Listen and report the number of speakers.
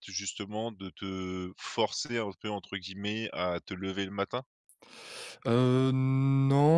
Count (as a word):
two